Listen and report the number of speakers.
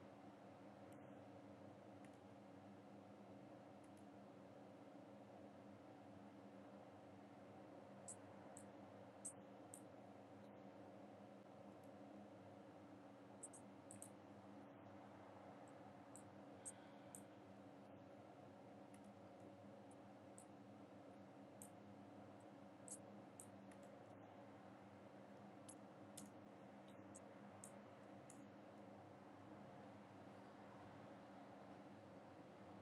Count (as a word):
zero